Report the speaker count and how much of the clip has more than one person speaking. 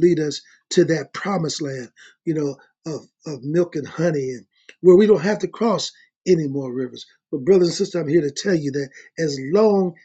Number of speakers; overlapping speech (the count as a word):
one, no overlap